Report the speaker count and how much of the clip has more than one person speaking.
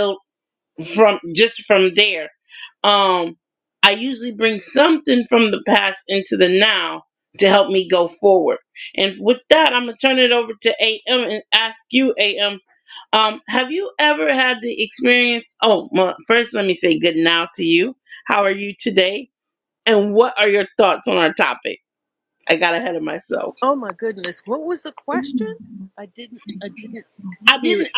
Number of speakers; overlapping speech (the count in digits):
2, about 1%